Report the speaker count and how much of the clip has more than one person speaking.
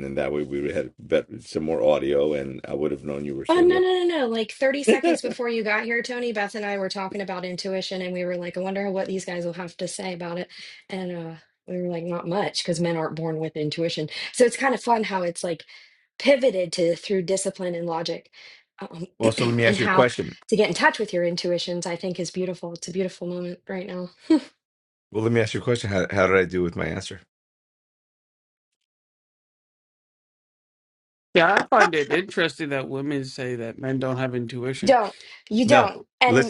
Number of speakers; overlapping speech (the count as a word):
three, about 4%